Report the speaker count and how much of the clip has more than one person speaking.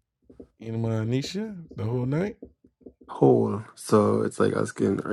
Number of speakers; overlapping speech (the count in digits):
2, no overlap